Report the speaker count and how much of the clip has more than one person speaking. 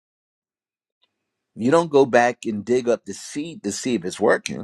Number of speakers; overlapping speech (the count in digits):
1, no overlap